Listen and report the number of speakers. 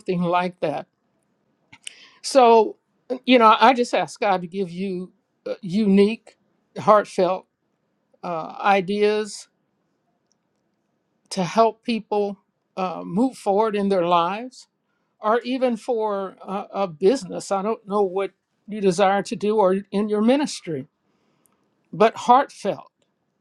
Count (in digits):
1